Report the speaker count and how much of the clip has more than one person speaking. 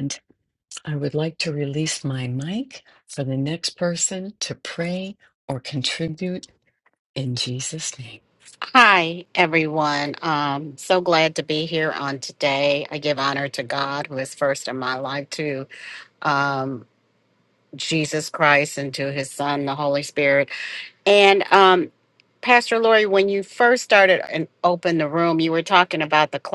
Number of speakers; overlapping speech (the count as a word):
two, no overlap